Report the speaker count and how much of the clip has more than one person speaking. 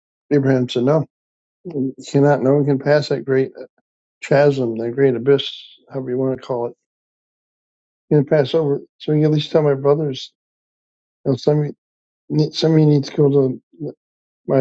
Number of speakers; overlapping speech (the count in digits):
1, no overlap